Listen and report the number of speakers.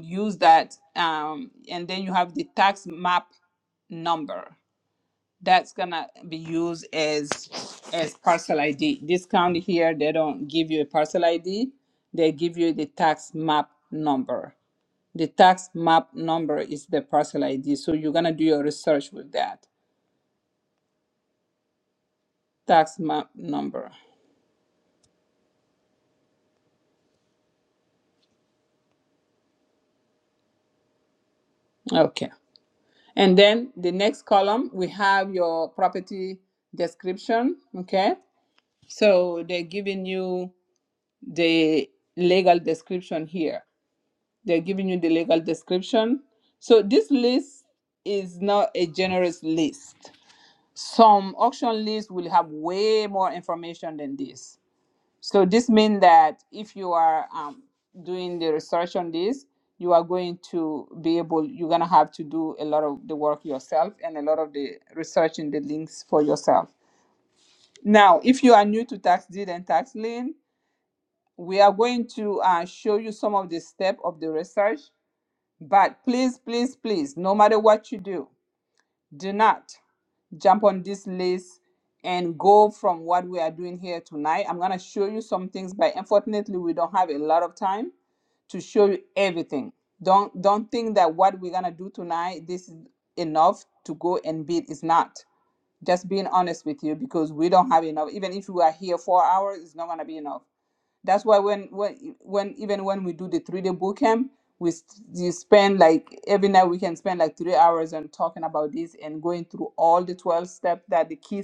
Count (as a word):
one